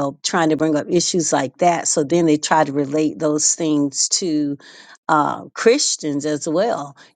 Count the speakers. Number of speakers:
1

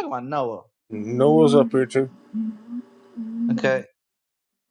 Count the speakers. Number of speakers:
2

